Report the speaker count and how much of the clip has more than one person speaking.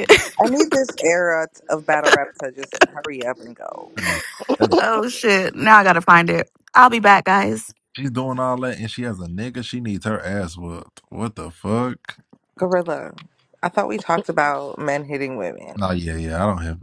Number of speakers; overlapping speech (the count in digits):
3, about 1%